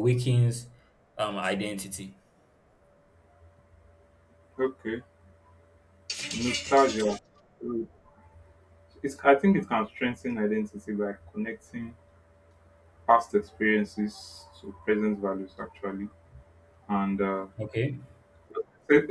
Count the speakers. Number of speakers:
two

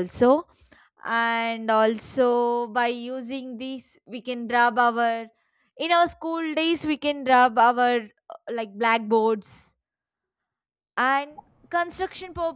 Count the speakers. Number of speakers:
one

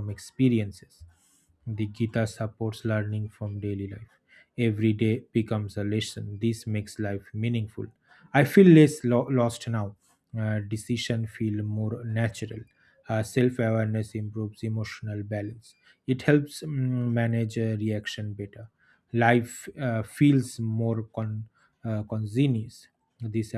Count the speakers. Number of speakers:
one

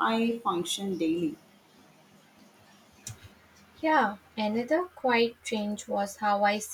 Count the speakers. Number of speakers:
two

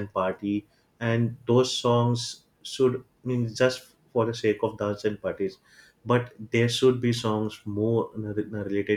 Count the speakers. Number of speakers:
one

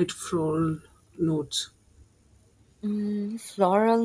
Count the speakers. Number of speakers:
two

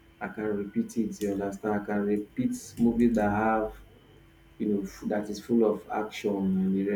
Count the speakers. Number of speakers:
one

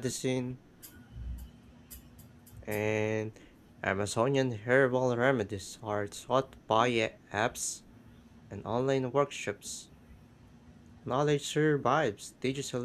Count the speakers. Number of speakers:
one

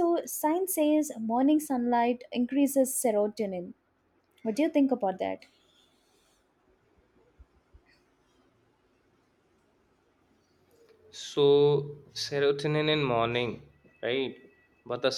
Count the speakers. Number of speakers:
two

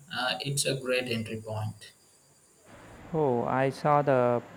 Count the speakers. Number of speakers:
two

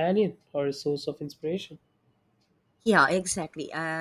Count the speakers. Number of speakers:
two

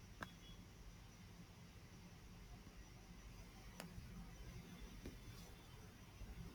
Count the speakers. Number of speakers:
zero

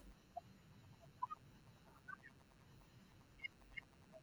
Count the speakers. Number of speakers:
zero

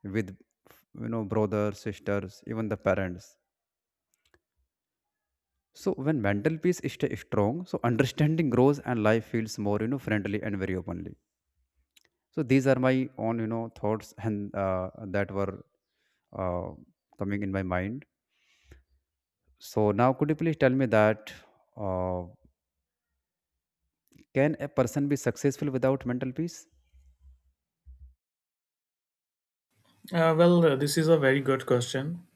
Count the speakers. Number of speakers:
two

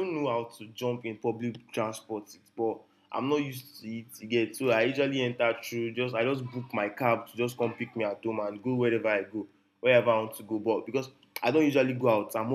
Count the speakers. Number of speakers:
one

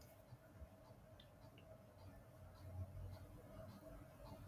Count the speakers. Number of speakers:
zero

